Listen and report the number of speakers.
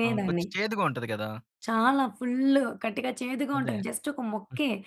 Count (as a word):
two